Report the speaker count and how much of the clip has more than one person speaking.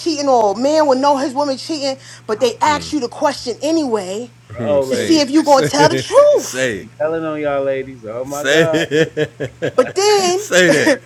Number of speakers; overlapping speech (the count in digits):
3, about 16%